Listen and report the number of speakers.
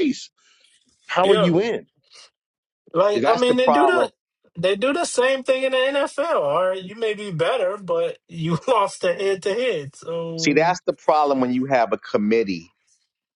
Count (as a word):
three